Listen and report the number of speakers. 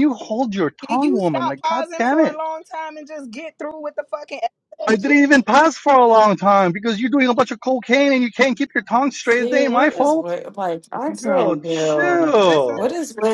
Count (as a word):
three